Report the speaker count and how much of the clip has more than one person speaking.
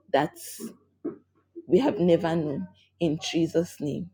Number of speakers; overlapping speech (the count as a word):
one, no overlap